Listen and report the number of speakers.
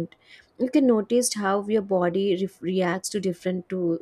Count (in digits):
1